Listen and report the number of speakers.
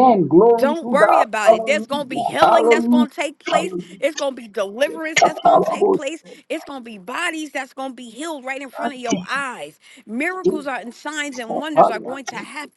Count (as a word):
two